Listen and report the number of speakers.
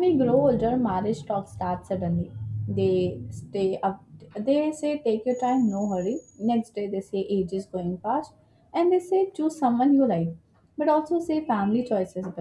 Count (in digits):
1